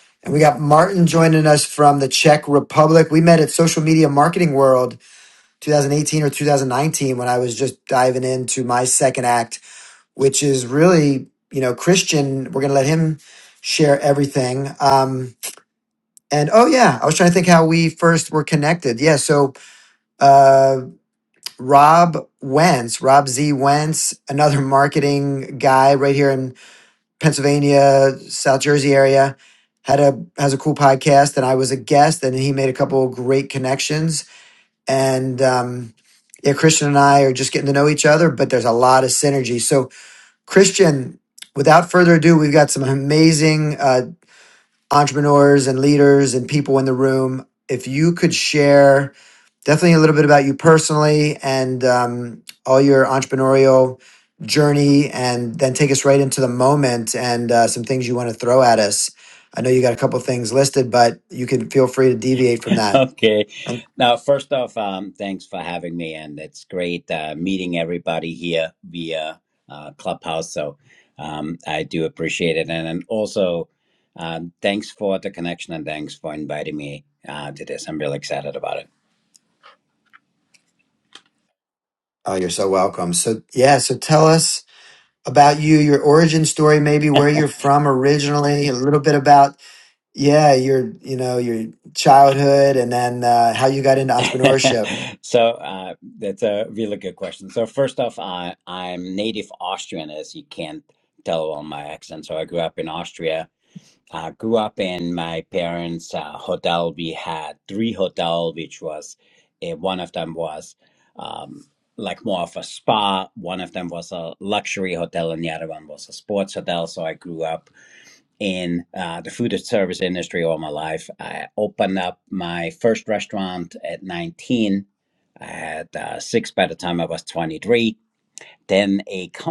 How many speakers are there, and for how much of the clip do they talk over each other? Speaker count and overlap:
2, about 1%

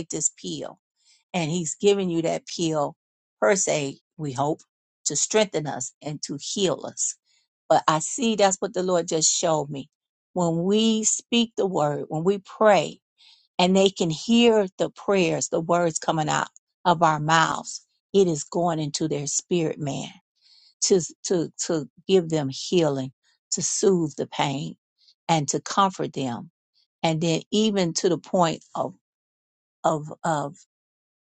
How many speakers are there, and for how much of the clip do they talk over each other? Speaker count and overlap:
1, no overlap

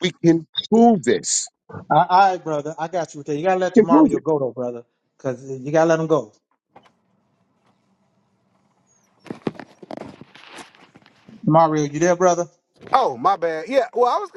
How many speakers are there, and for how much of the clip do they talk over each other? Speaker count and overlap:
3, about 3%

